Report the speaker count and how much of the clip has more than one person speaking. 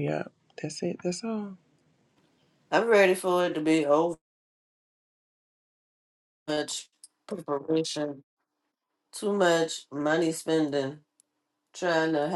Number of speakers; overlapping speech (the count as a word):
two, no overlap